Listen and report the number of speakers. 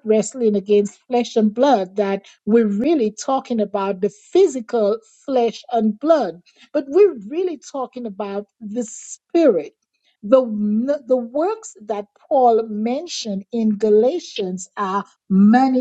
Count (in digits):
1